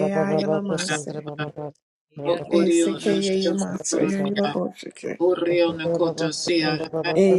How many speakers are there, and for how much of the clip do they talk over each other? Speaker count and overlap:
3, about 49%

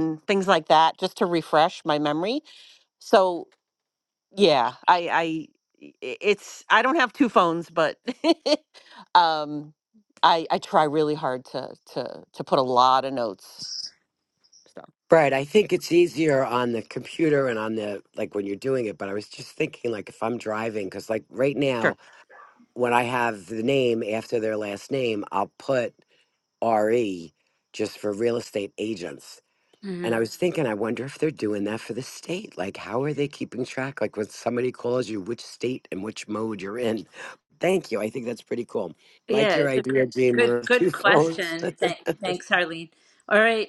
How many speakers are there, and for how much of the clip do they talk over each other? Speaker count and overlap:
3, about 4%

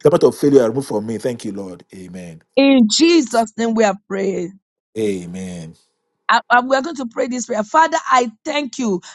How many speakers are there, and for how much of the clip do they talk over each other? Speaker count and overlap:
2, no overlap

